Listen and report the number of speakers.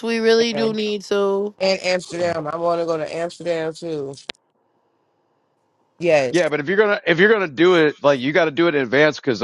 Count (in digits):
3